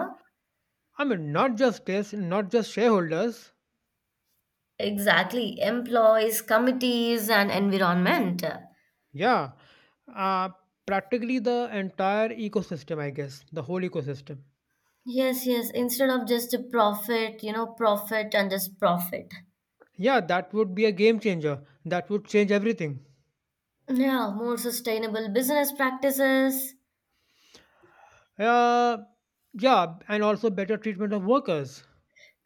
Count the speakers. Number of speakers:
2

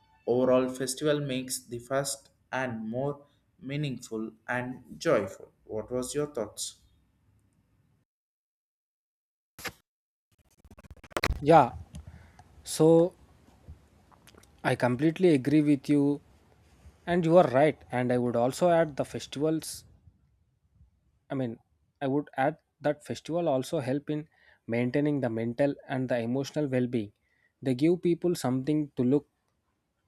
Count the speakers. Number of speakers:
2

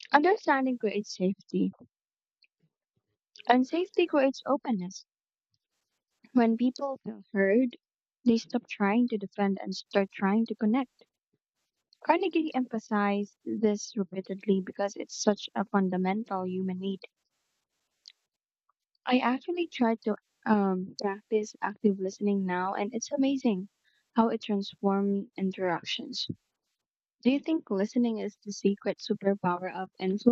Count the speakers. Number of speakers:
1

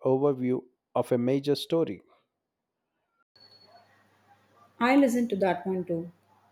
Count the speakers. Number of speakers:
2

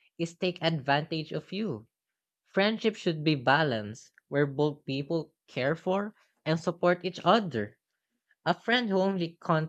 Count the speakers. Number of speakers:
1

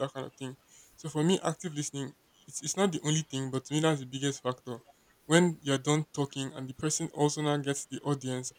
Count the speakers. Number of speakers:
1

